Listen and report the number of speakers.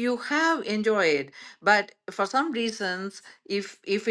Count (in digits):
1